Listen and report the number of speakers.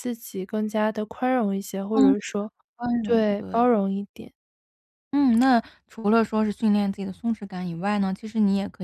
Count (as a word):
two